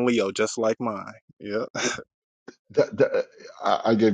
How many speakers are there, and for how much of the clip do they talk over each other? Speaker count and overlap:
2, no overlap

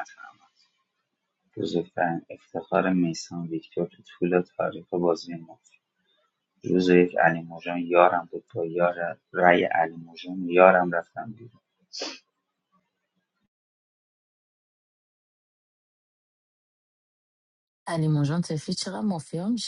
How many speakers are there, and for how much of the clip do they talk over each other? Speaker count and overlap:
2, no overlap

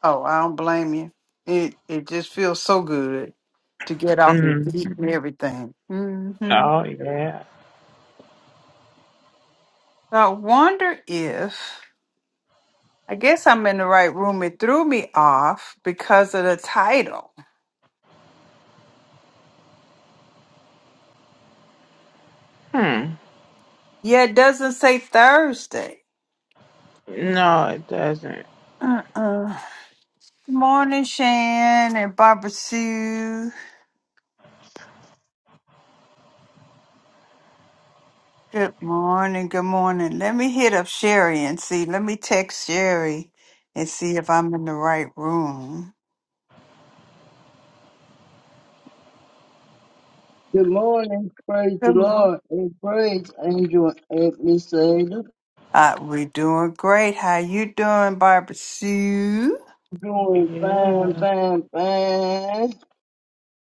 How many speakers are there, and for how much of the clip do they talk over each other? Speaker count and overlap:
3, about 3%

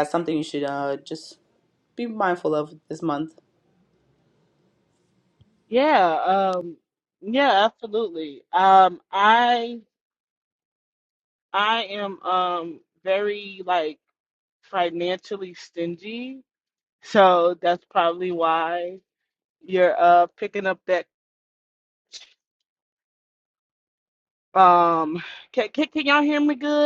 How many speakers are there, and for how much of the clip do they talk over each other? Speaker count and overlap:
2, no overlap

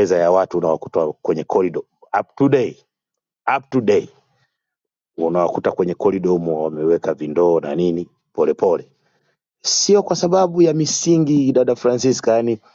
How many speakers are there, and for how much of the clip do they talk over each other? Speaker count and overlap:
1, no overlap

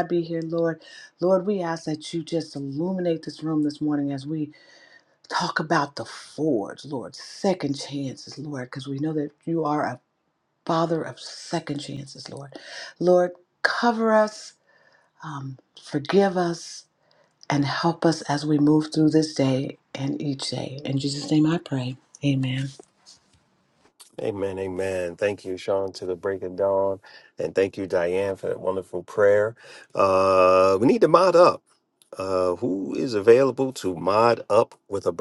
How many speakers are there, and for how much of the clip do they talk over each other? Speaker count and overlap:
2, no overlap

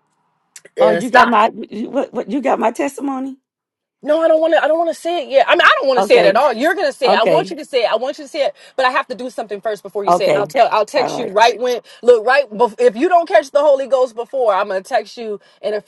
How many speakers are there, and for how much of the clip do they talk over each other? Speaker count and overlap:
2, about 14%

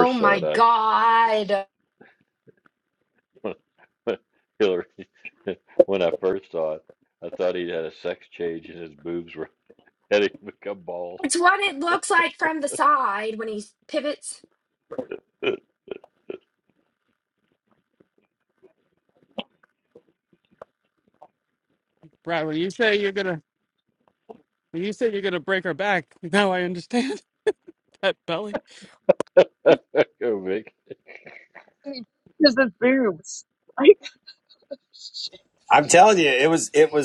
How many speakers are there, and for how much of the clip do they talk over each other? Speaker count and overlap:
5, about 2%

